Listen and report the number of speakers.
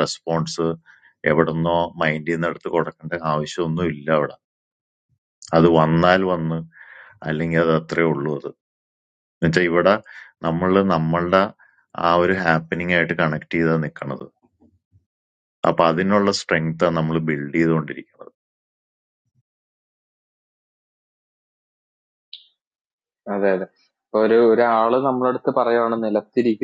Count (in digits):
2